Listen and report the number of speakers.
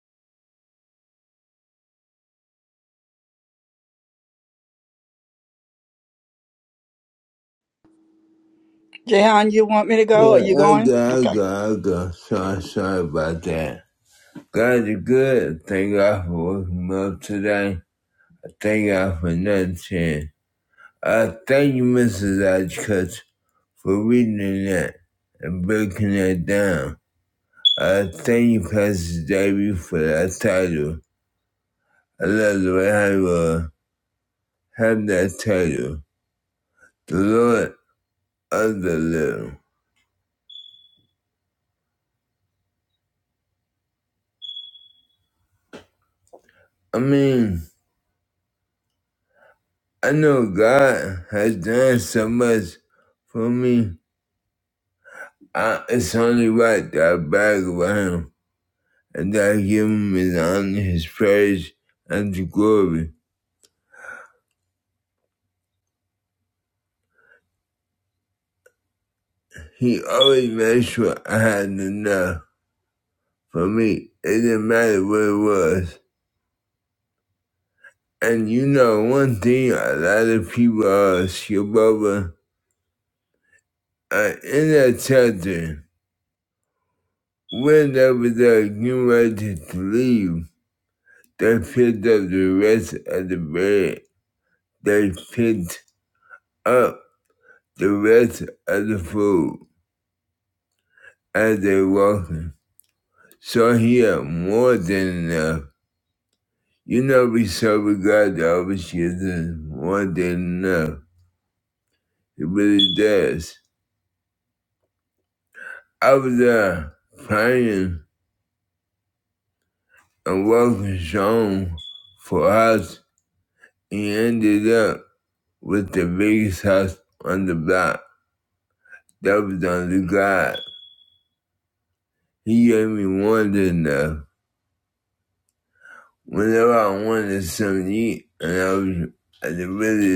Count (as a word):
two